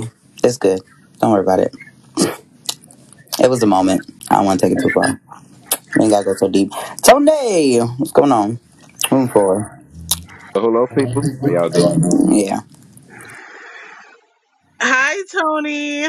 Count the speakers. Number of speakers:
three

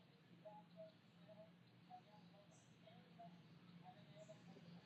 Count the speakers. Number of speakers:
zero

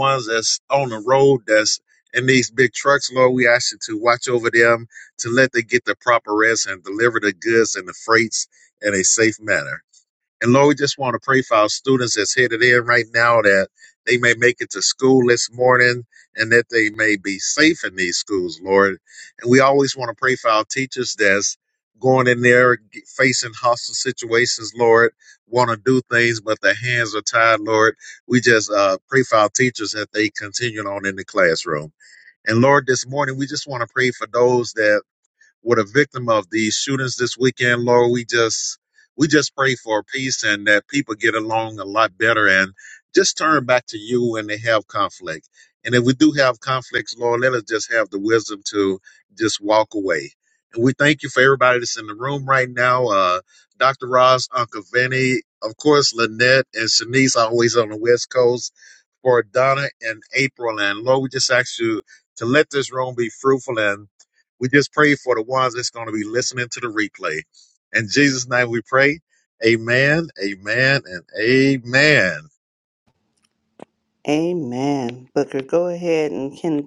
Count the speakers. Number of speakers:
two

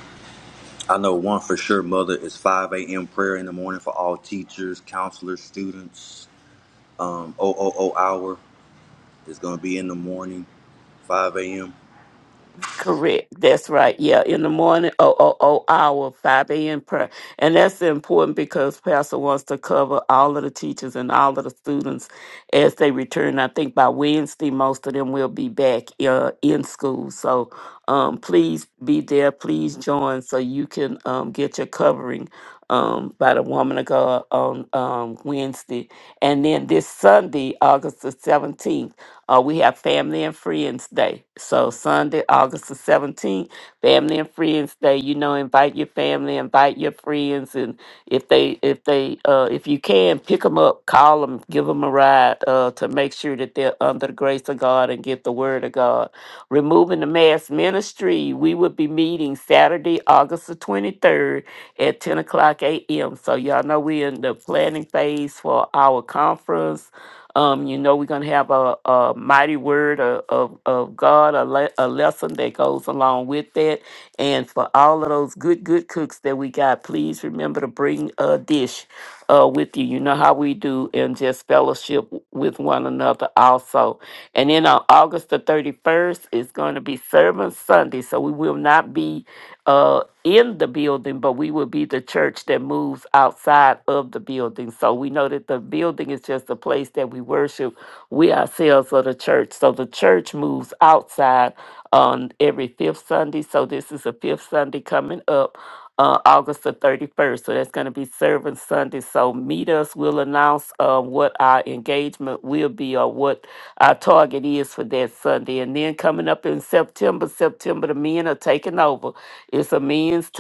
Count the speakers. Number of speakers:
two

